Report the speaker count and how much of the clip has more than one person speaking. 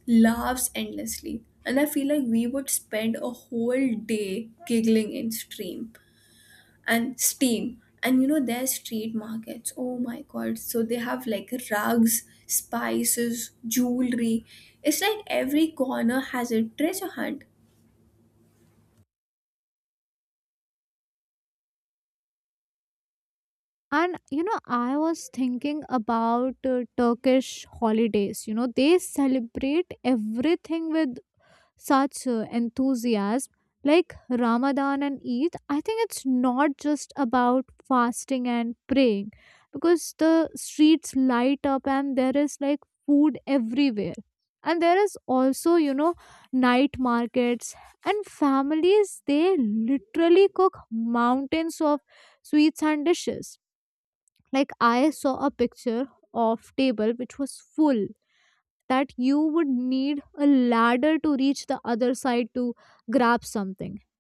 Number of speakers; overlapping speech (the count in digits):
2, no overlap